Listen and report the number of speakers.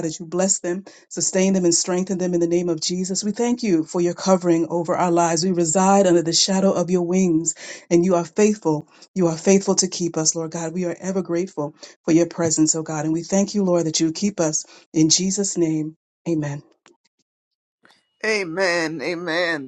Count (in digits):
2